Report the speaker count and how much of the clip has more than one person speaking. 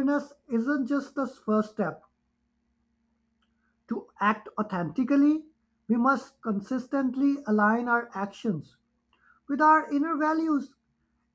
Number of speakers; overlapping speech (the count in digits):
1, no overlap